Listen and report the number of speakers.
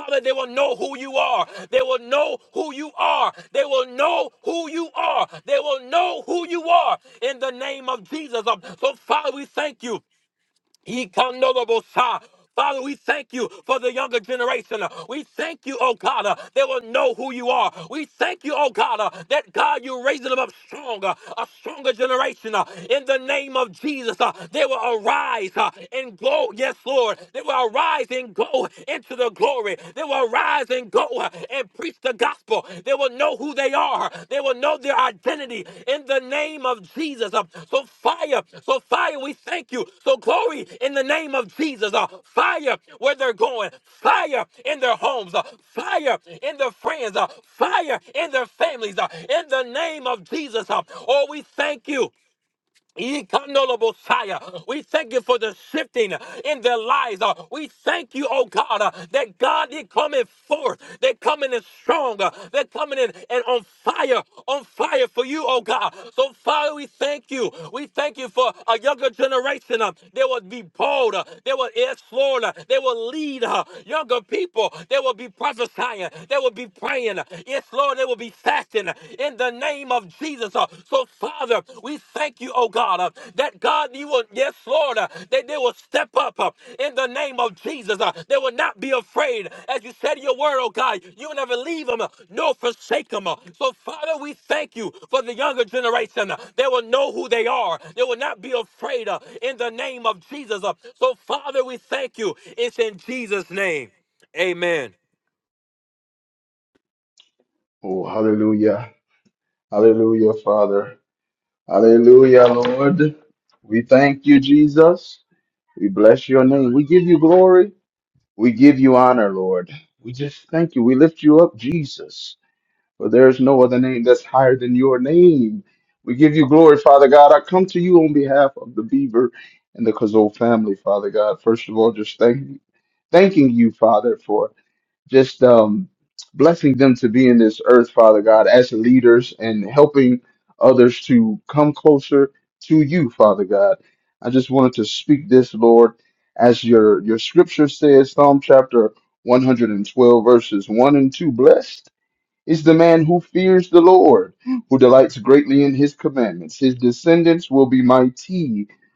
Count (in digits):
2